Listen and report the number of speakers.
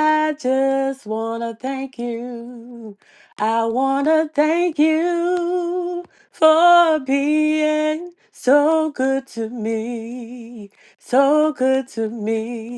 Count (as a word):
one